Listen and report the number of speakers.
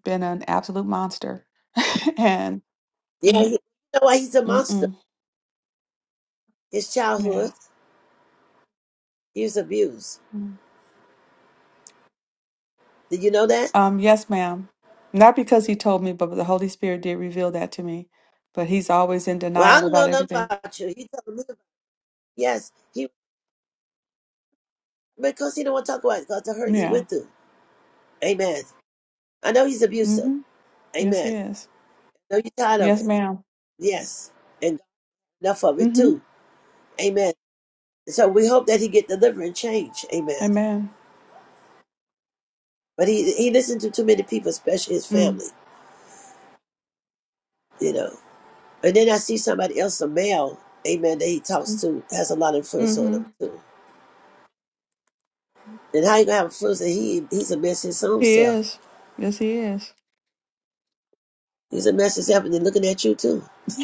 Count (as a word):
two